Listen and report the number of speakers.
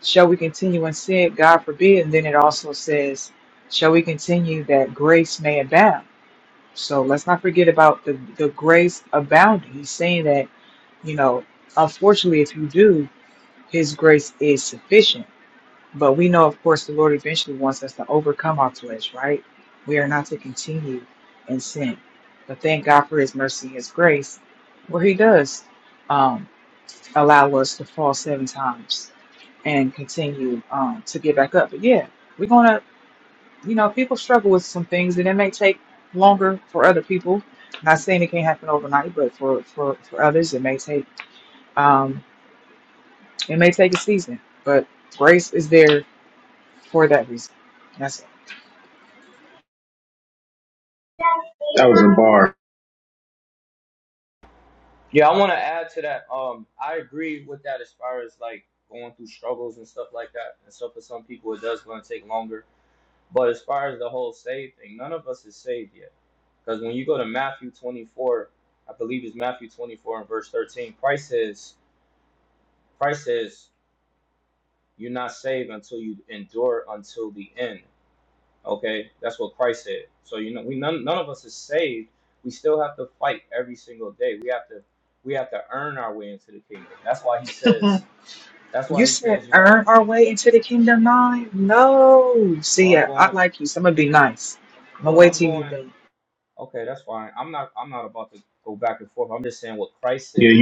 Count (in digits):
3